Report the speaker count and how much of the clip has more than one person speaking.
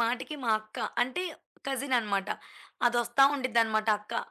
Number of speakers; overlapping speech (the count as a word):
one, no overlap